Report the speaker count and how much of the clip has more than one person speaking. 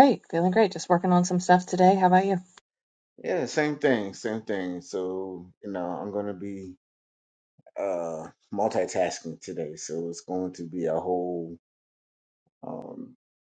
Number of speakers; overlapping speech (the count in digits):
2, no overlap